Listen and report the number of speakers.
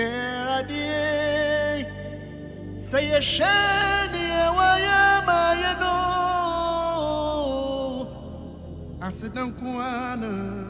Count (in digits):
1